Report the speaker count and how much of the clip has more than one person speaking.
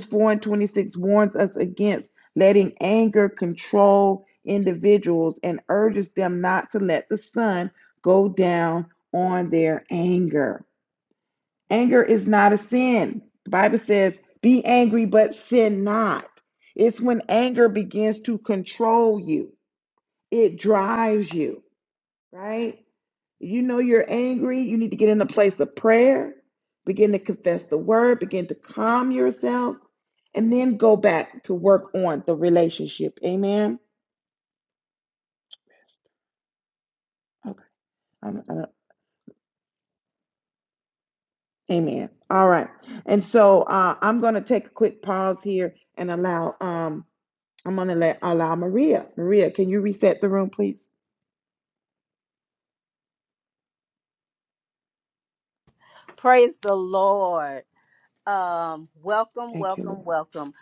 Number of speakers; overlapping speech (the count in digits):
2, about 1%